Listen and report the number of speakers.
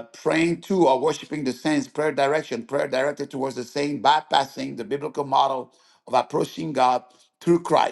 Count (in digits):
1